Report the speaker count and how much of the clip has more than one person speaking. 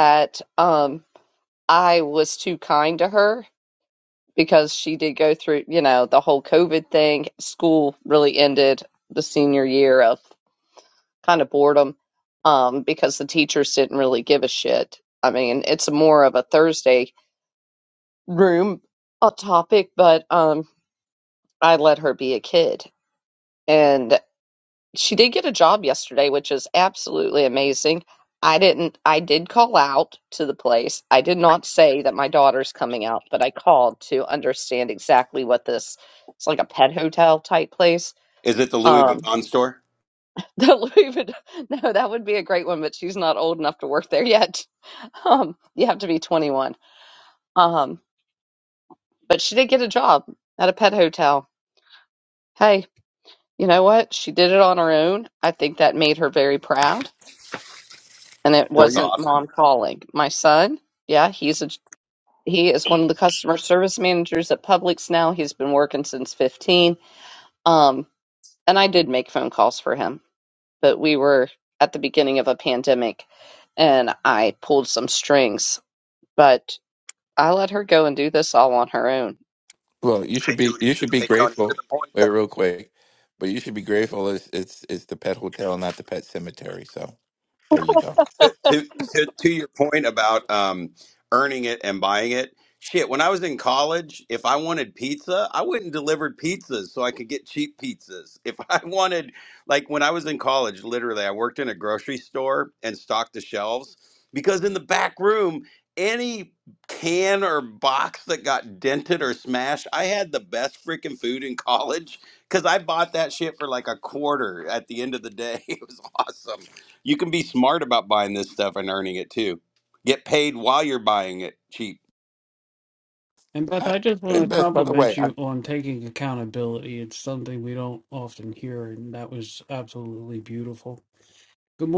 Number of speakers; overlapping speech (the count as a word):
four, about 2%